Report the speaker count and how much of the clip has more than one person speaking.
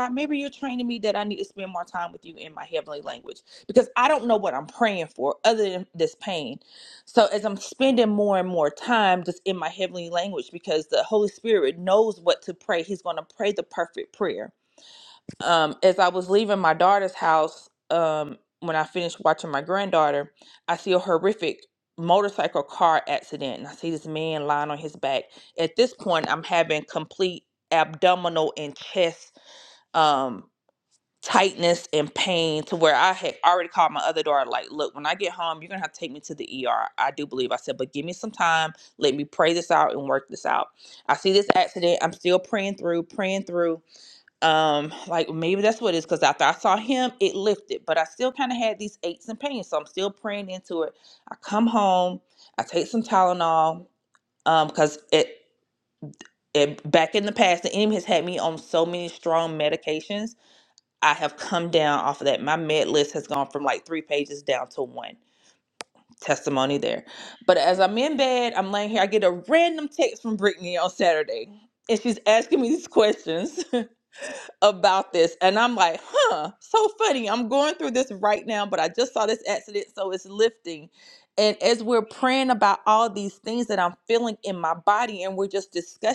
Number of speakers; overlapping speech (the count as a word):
one, no overlap